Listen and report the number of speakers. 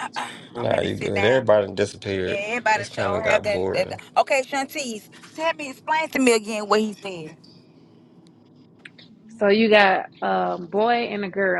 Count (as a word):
three